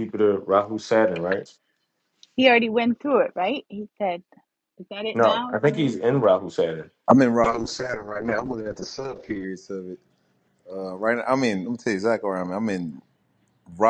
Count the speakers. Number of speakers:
3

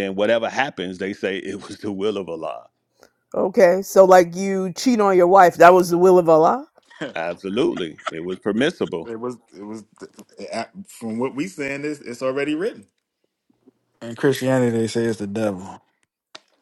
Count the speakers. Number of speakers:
4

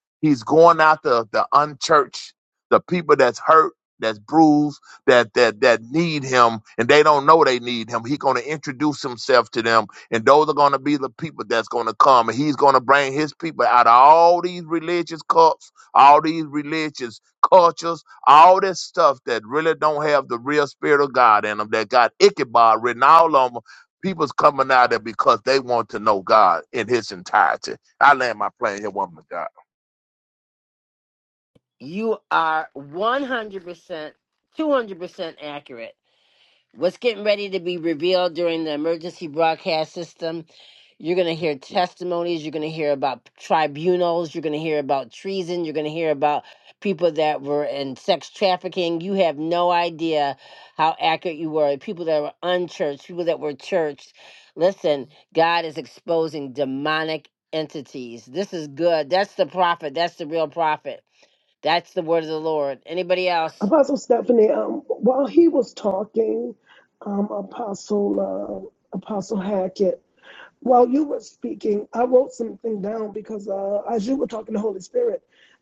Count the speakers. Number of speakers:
3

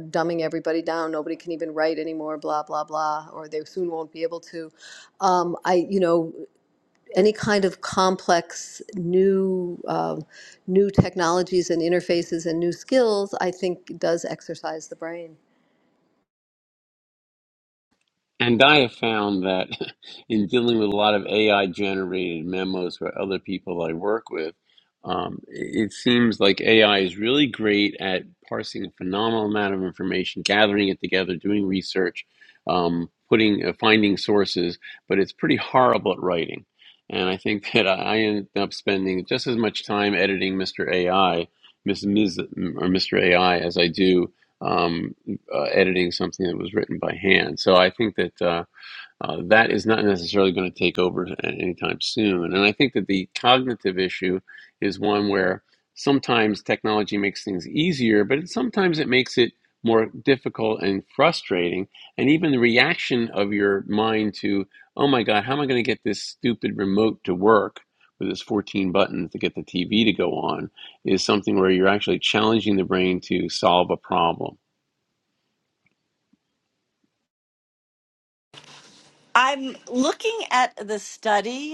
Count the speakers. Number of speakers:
3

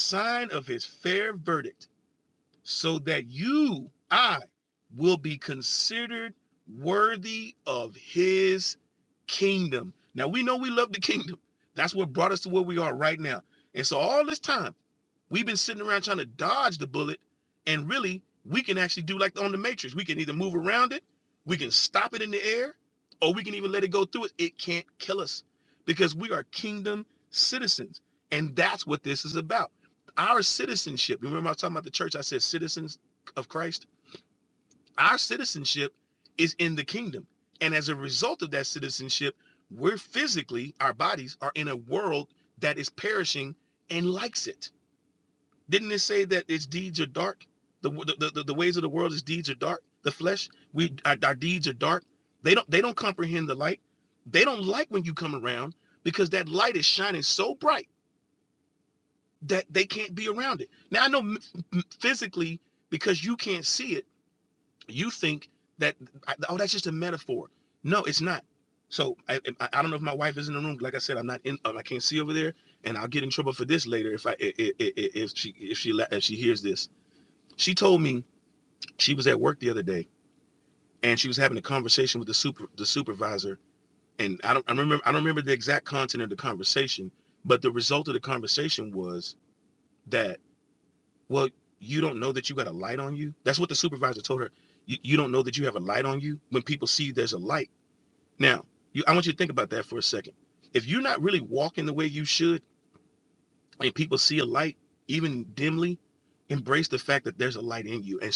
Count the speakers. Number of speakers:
1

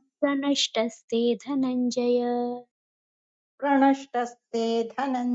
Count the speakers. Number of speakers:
2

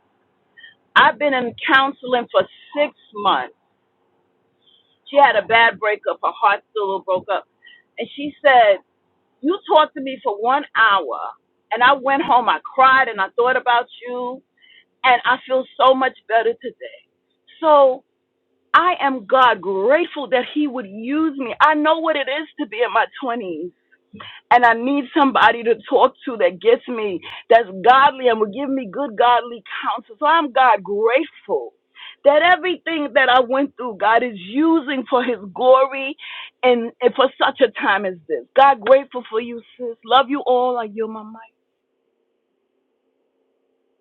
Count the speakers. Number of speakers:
1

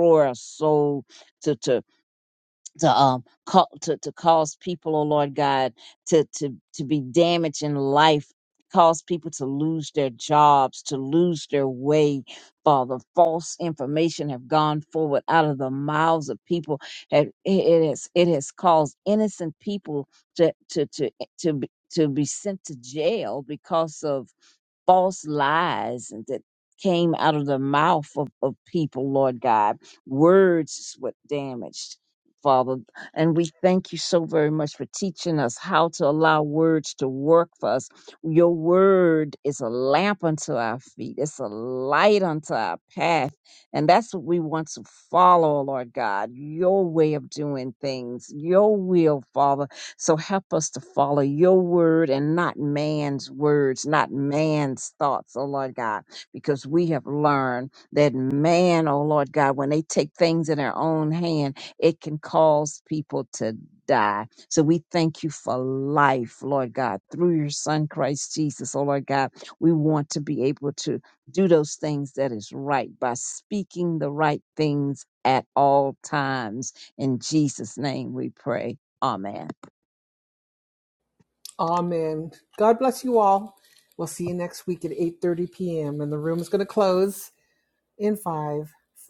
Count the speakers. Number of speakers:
2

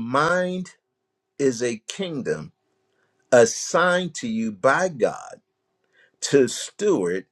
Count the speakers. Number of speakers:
1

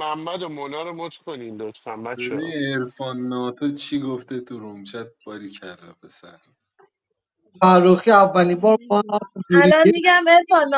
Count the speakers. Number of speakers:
4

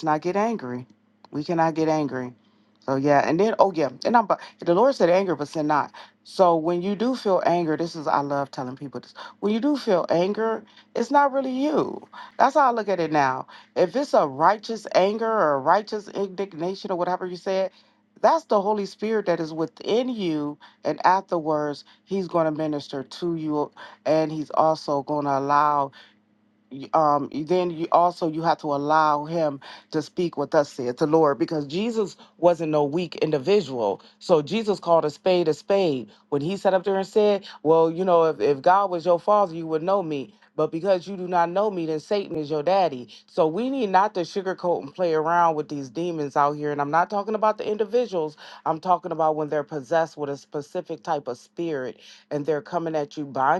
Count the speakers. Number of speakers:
1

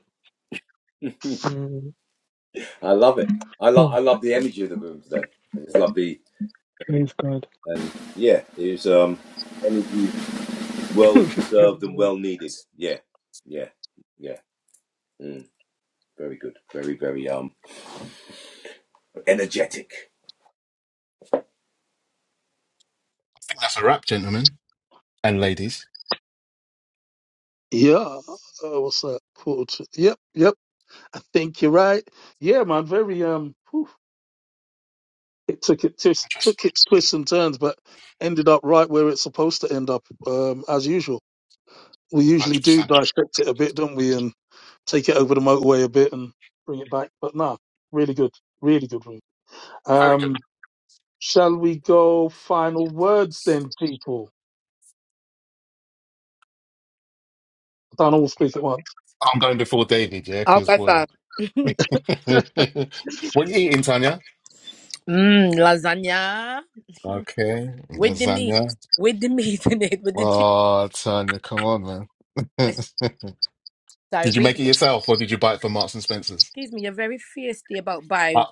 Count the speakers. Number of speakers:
5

